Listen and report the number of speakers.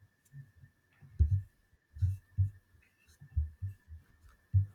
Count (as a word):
zero